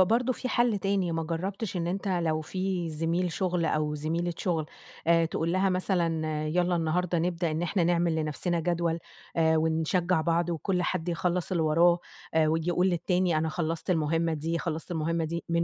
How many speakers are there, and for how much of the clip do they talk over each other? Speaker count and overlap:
one, no overlap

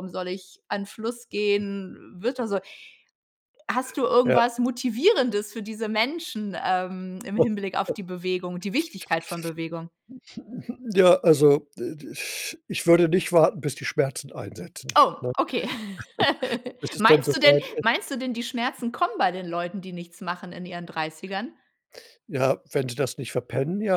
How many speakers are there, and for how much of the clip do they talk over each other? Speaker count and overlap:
two, about 7%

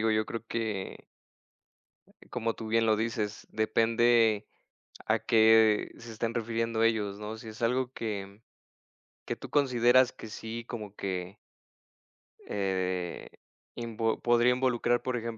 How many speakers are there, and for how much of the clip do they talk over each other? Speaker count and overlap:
one, no overlap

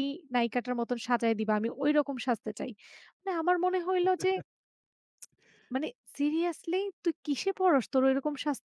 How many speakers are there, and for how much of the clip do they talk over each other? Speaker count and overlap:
one, no overlap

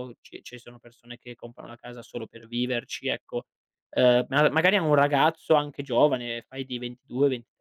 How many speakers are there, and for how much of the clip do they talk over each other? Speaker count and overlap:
one, no overlap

